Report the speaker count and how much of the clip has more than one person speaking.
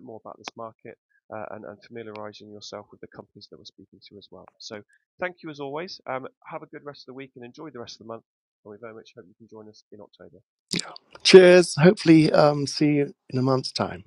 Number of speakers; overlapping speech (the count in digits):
2, no overlap